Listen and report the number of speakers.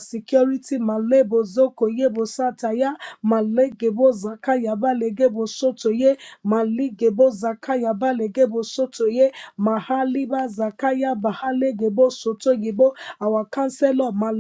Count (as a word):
one